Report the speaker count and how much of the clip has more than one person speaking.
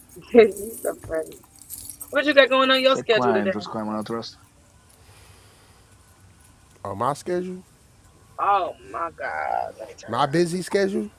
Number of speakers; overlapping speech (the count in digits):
3, about 8%